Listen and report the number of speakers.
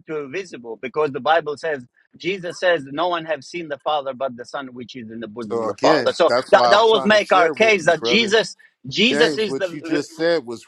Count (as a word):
two